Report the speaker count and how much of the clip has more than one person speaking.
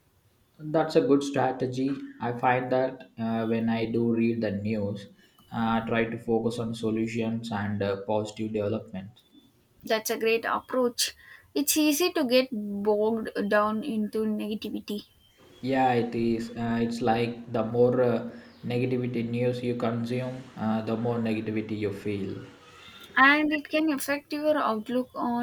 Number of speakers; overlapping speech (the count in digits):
2, no overlap